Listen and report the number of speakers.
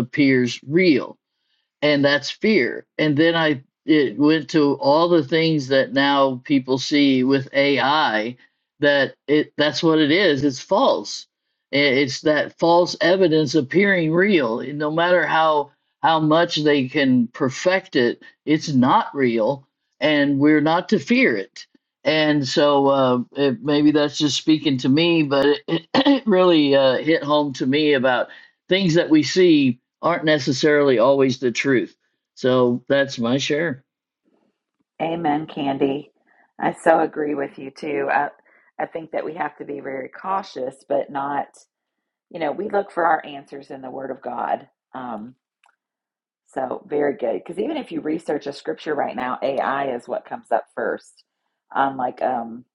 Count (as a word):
two